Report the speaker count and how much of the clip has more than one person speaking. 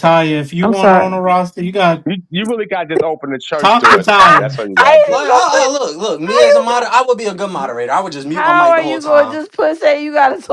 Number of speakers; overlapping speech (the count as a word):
four, about 40%